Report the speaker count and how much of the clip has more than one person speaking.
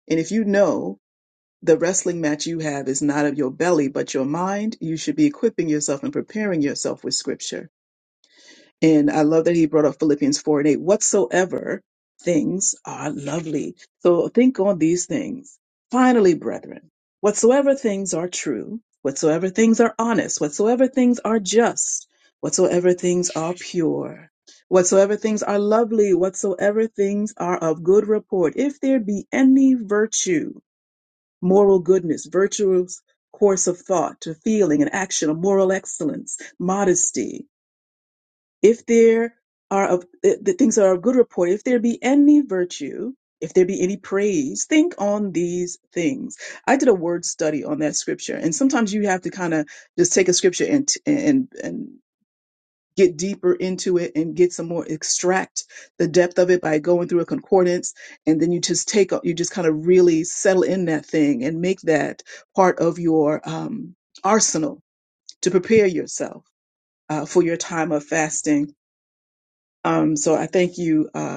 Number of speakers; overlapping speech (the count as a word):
one, no overlap